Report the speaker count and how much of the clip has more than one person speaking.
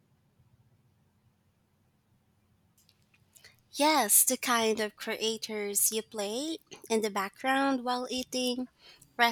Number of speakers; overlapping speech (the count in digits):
1, no overlap